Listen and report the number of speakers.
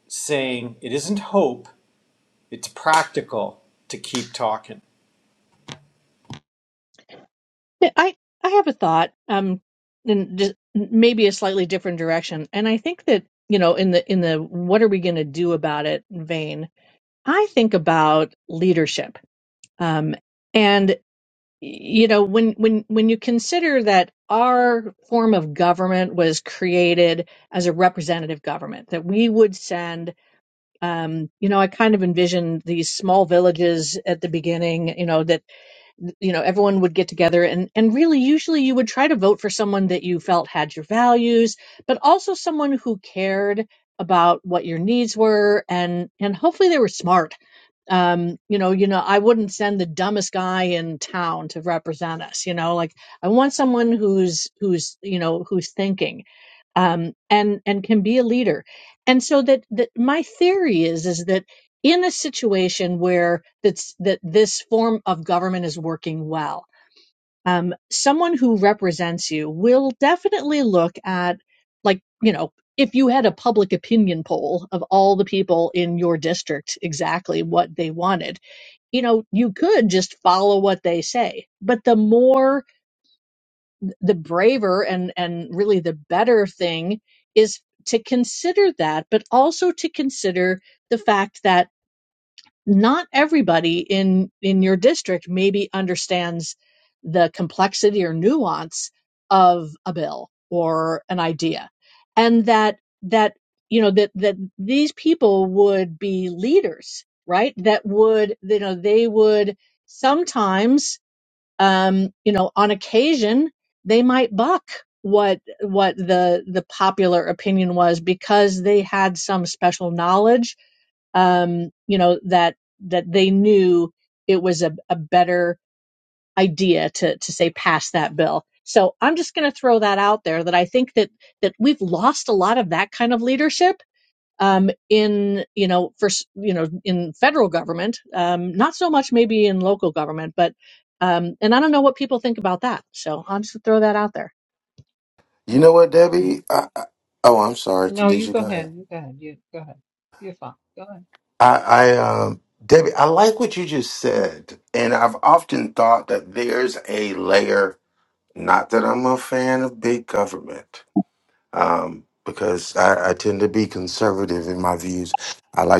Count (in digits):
4